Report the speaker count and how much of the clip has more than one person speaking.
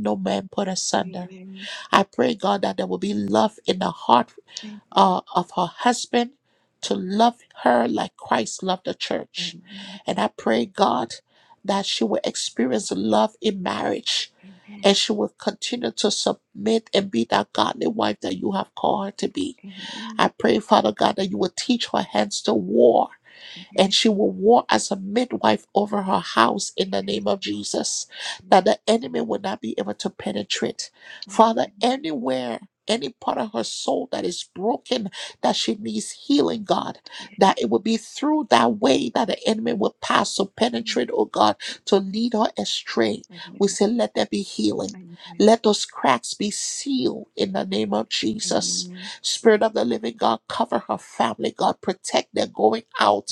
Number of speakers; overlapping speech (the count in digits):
2, about 6%